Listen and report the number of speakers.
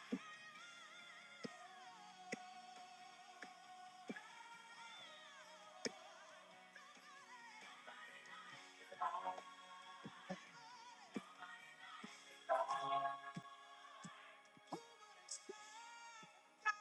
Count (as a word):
zero